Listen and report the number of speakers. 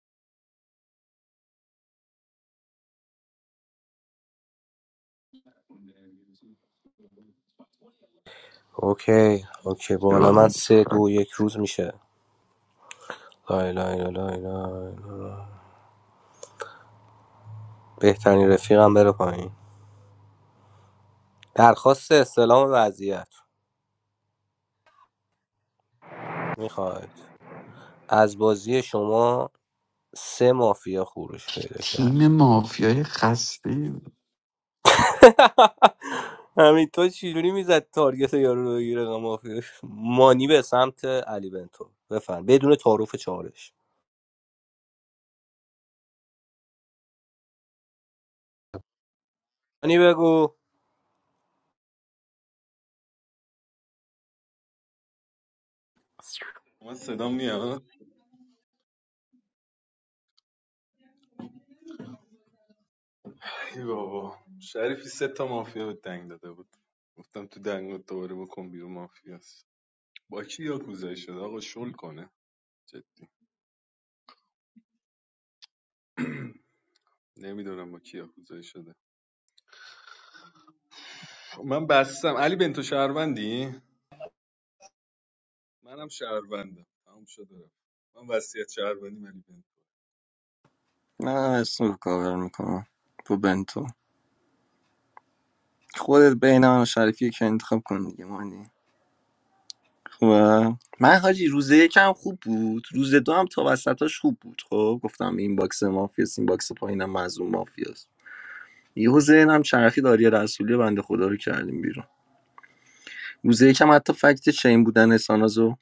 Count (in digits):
4